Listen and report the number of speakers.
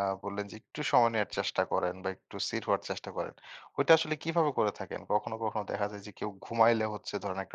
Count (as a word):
one